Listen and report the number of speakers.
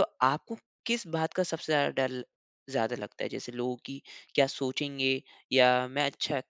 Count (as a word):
one